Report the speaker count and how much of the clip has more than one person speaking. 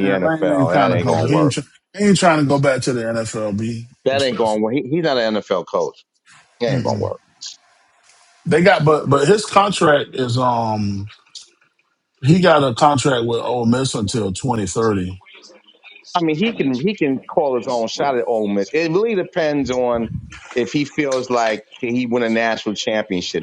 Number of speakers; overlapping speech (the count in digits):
2, about 10%